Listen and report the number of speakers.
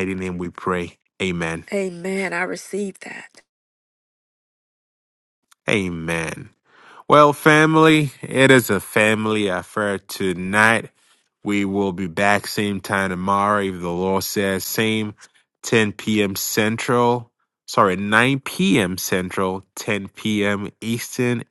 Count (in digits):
2